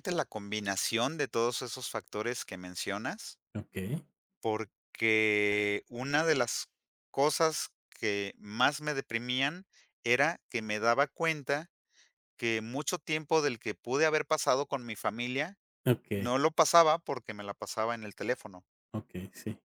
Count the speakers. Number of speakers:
two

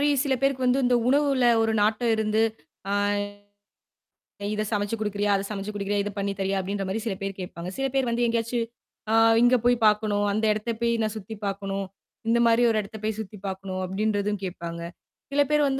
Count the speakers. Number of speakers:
one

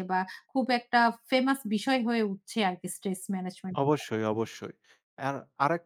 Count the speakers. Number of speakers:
two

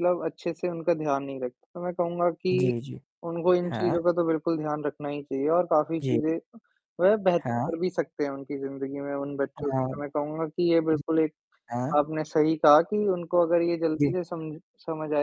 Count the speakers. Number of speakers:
two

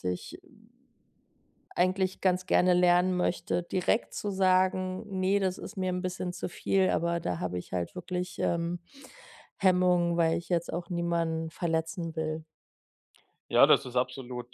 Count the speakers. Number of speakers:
two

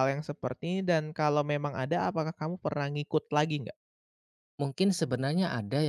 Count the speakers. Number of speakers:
two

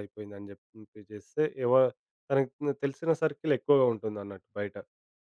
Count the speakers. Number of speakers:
one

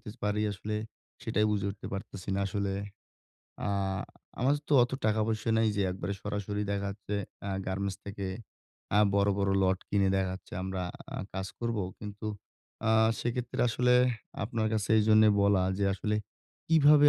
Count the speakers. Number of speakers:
one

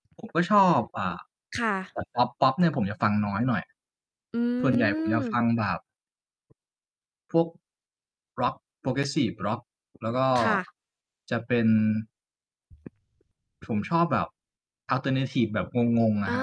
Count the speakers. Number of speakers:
two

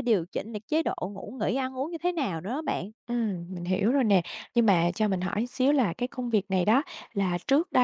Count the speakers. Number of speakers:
two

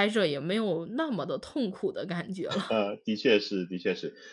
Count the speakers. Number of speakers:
two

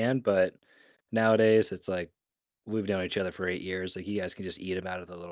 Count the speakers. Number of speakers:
one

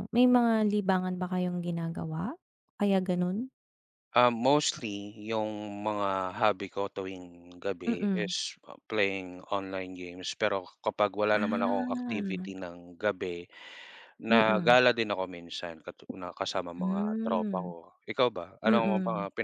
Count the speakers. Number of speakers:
two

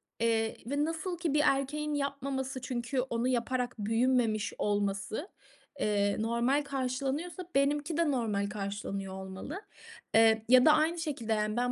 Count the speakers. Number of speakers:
one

